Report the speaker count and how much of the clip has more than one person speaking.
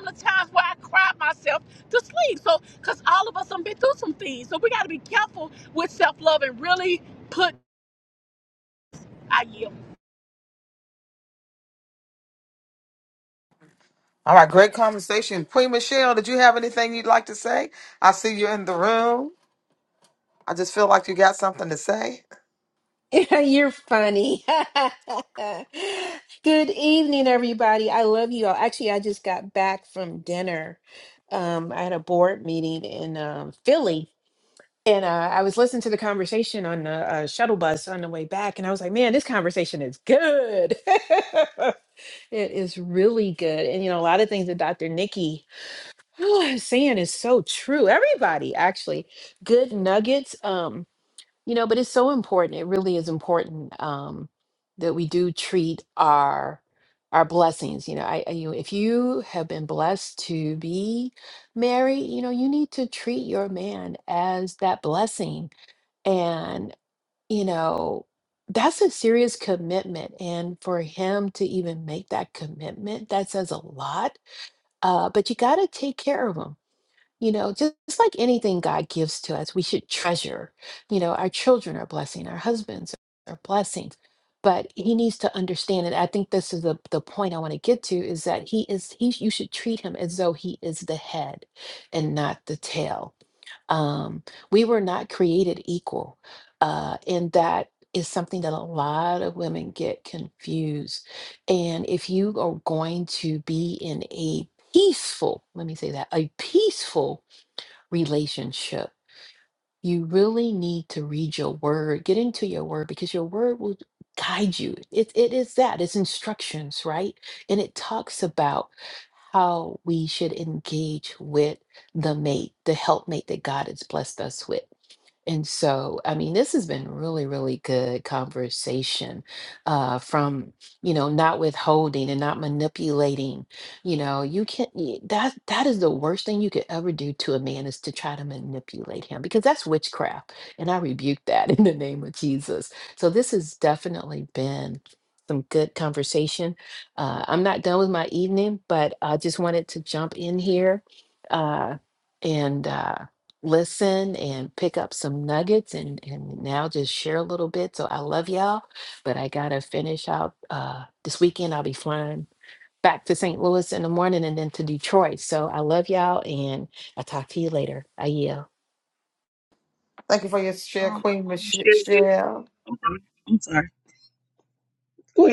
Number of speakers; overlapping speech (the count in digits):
4, about 1%